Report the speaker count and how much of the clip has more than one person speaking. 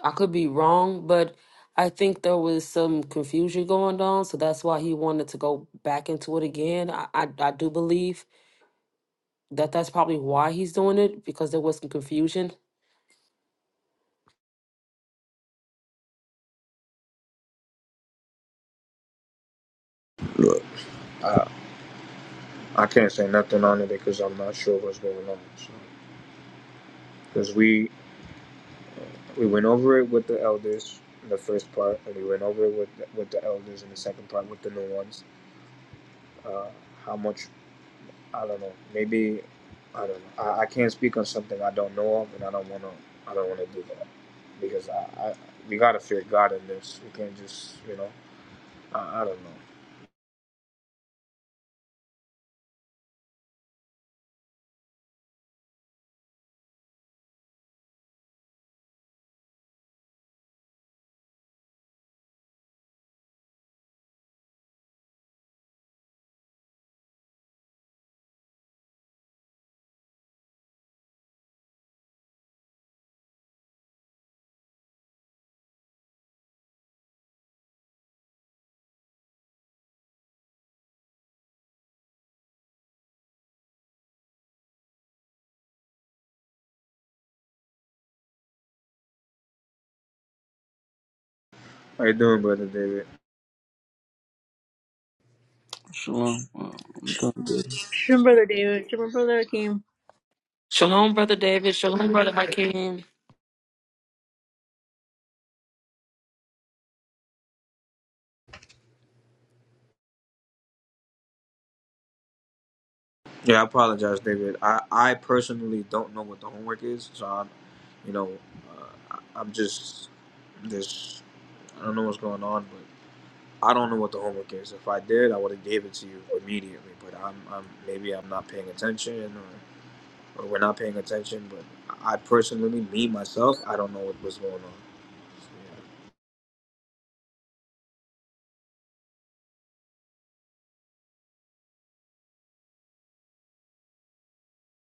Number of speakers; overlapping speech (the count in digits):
4, no overlap